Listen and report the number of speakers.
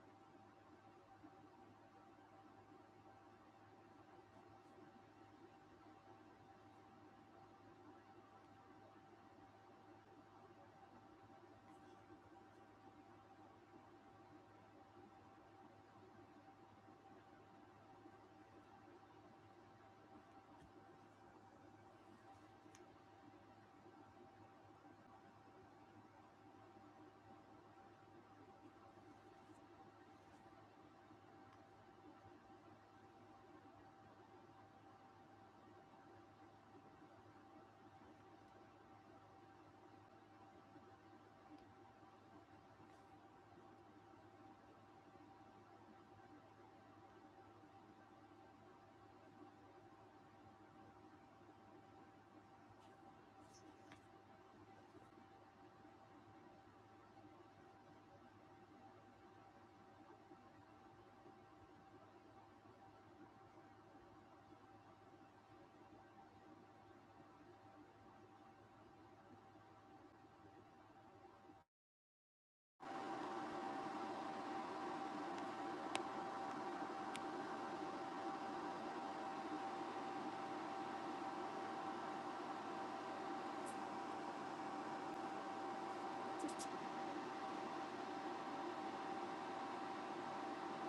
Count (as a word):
zero